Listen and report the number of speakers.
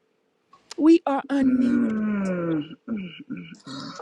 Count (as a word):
two